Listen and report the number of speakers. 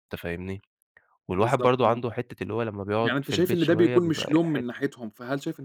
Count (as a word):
two